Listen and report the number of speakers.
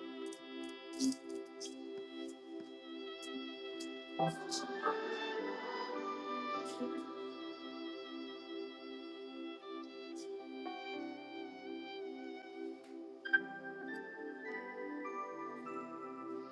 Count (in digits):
0